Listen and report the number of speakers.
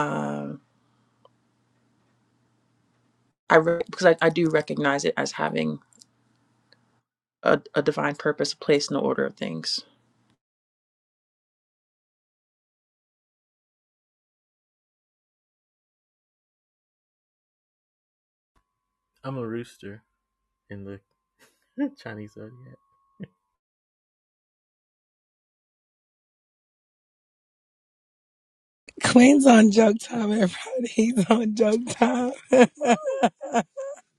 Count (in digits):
3